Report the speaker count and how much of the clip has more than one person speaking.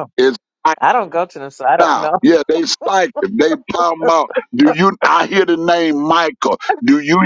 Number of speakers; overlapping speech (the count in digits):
2, about 6%